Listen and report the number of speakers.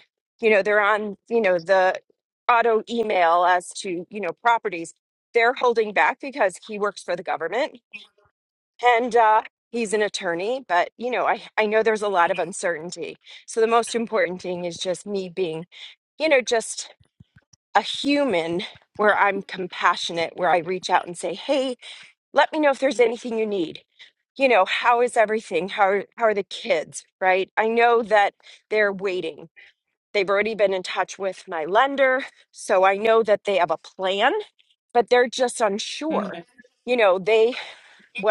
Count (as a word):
one